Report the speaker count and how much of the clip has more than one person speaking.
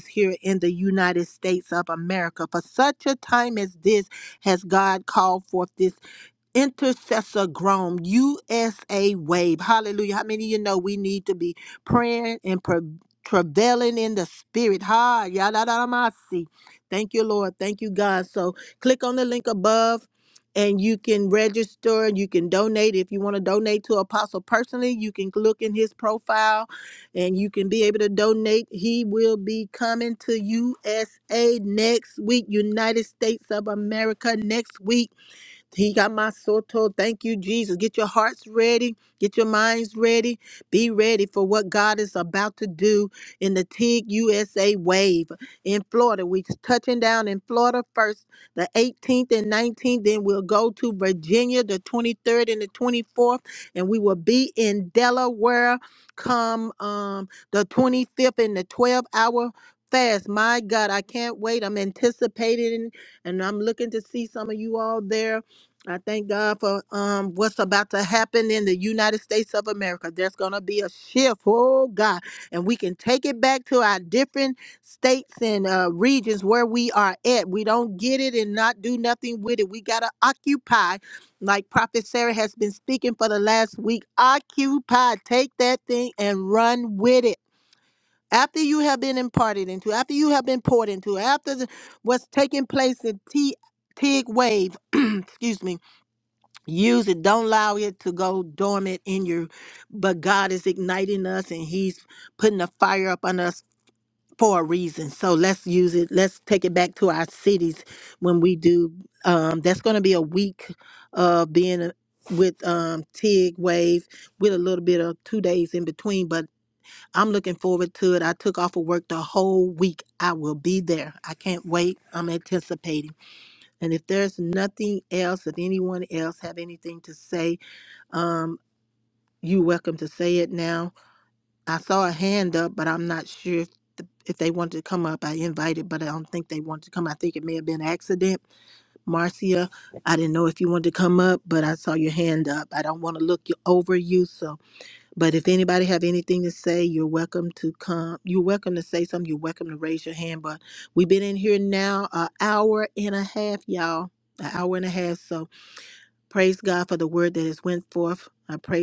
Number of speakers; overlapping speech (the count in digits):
1, no overlap